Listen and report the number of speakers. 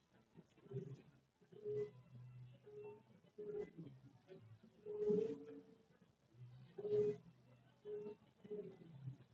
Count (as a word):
zero